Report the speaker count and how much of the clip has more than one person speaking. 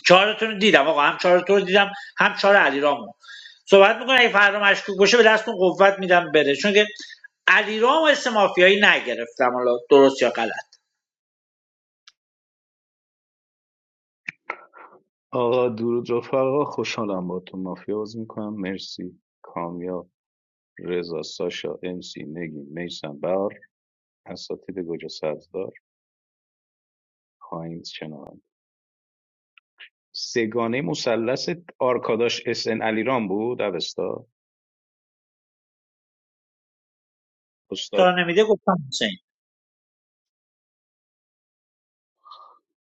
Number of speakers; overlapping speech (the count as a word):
two, under 1%